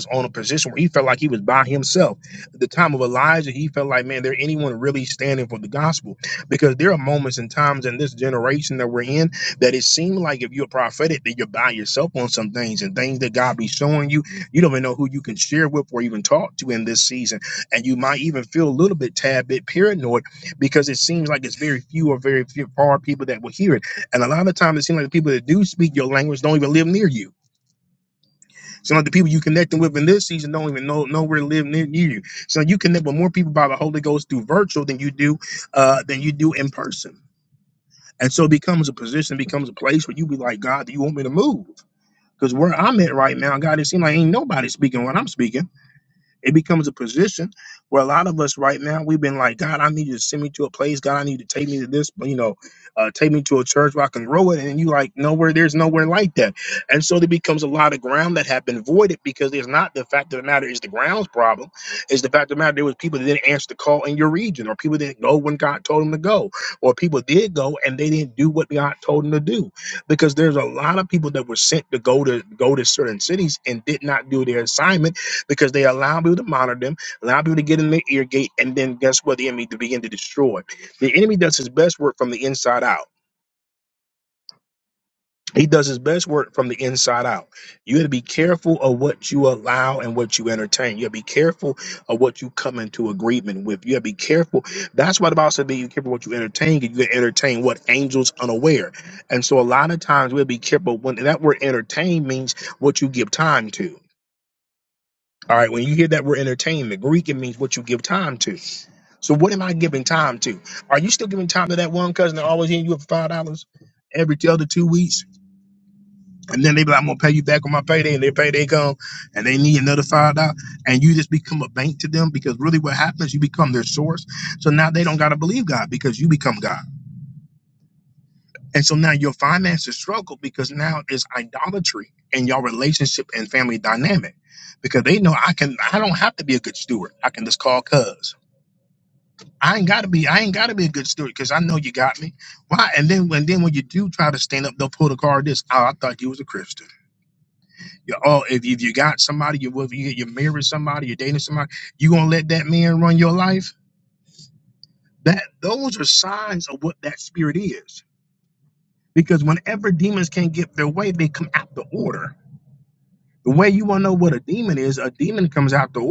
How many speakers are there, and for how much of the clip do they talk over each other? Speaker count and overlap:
one, no overlap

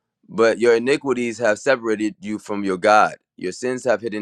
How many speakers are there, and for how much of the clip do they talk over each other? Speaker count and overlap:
one, no overlap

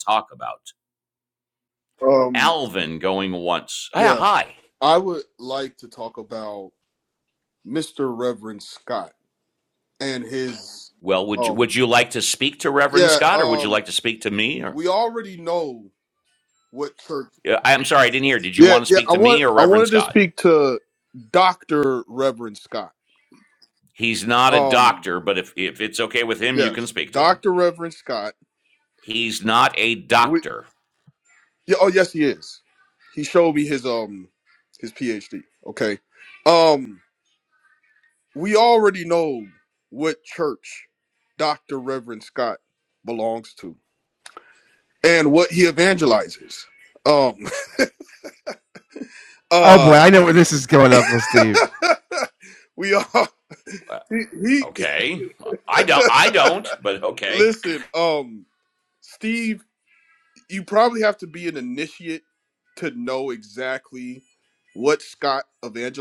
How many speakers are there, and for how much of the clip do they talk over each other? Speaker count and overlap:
three, about 8%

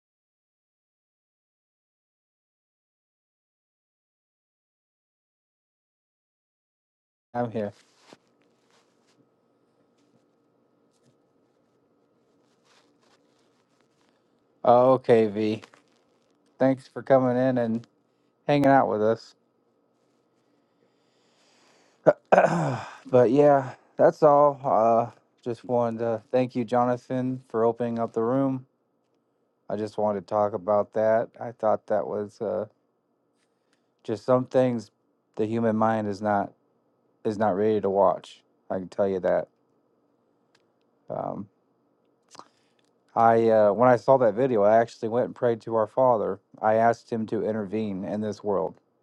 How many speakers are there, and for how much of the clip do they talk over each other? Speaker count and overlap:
one, no overlap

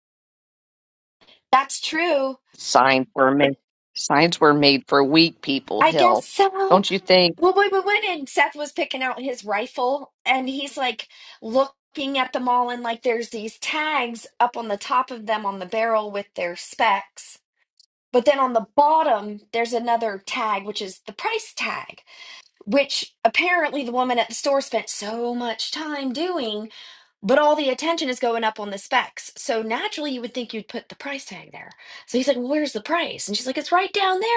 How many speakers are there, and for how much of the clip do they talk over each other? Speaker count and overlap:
two, about 2%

